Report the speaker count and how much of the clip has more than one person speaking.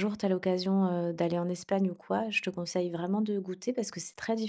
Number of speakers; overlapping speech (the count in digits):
1, no overlap